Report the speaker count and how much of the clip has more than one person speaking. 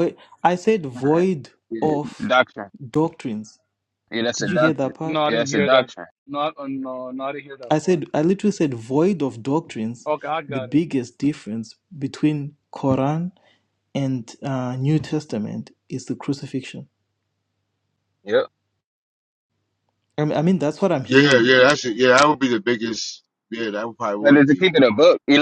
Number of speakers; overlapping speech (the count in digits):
4, about 12%